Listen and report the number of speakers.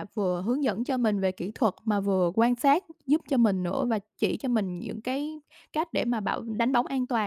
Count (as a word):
one